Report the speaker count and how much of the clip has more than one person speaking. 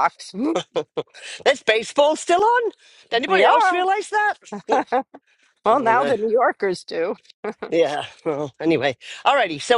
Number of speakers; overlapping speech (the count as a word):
two, about 7%